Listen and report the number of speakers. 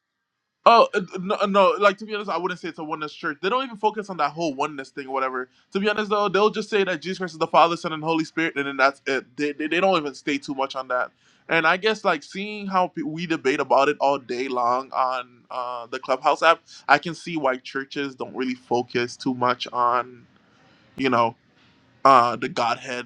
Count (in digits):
1